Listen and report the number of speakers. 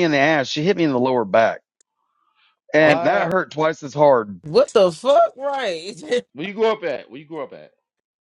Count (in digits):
3